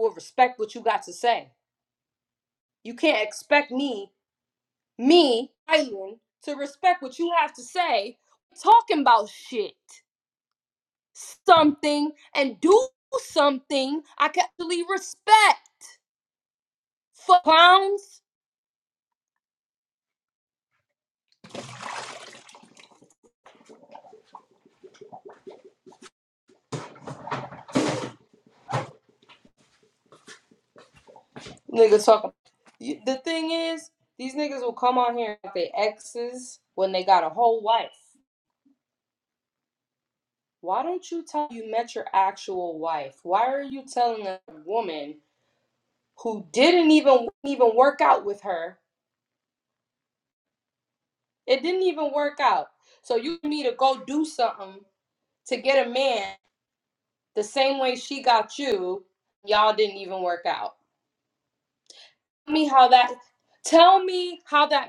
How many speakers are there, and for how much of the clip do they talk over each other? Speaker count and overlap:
1, no overlap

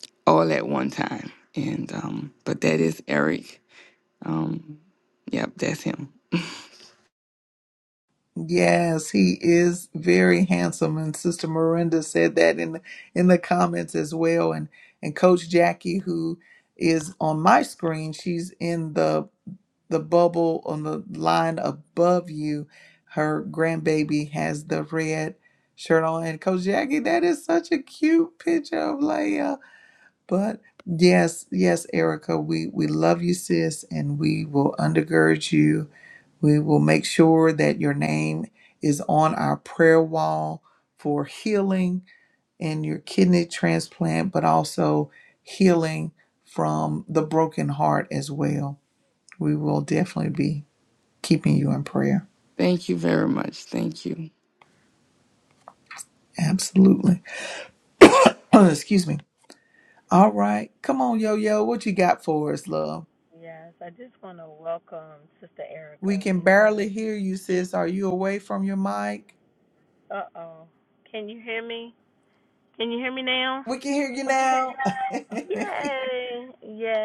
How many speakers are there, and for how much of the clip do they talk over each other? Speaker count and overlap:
3, about 1%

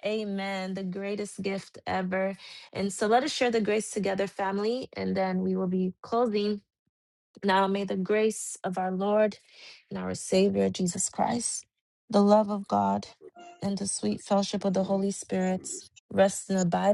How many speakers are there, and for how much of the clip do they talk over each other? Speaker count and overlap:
1, no overlap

